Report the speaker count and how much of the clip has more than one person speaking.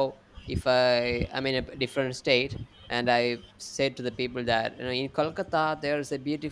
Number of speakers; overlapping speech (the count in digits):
1, no overlap